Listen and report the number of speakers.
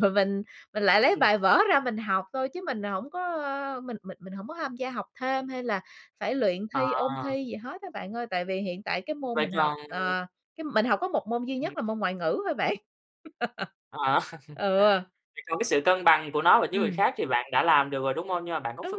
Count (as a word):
two